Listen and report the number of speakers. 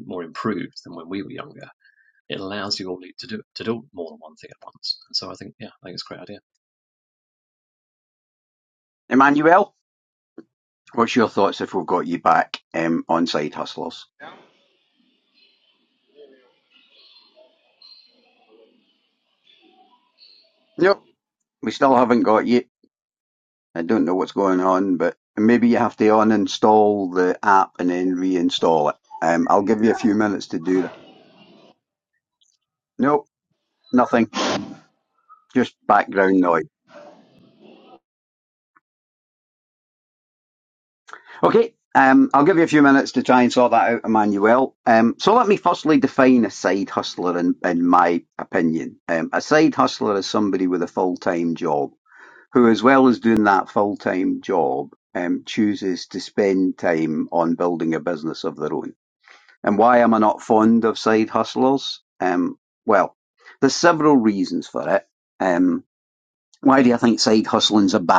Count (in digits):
2